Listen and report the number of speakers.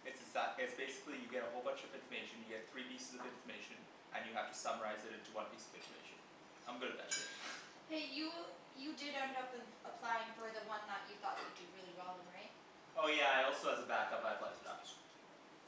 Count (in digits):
2